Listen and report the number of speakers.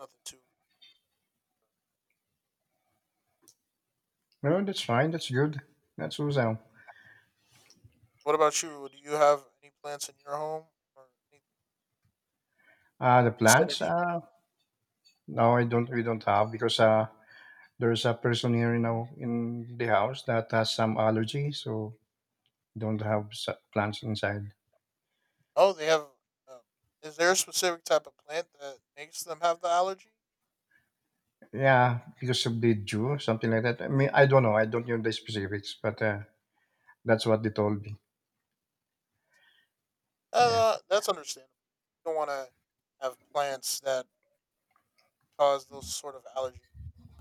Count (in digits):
2